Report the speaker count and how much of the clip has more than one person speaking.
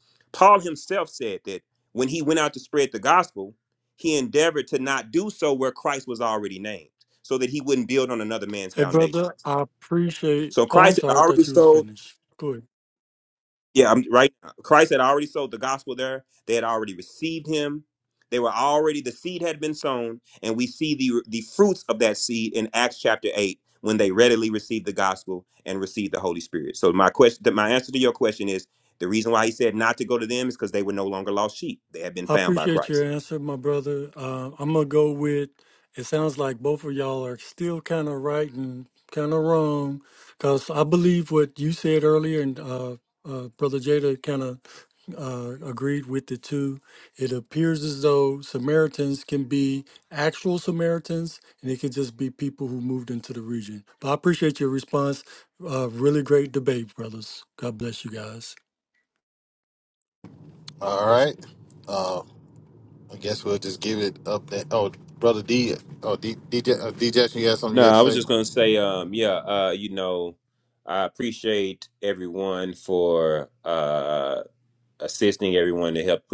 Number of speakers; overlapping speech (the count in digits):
3, about 4%